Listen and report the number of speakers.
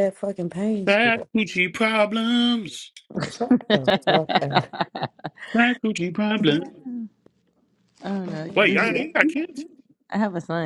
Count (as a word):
three